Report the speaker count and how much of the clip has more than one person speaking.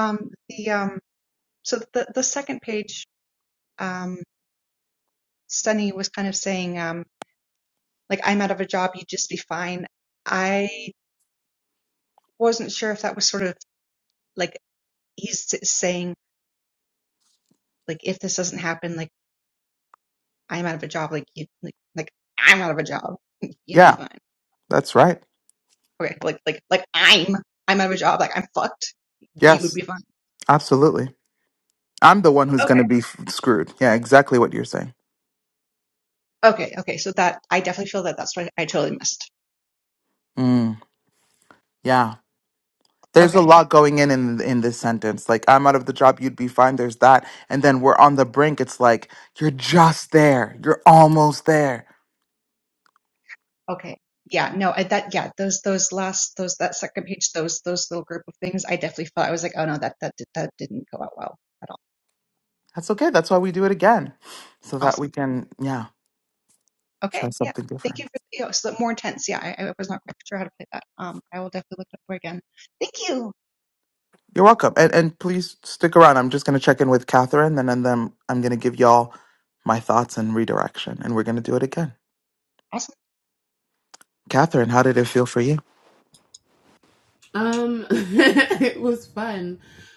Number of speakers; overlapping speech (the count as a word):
three, about 2%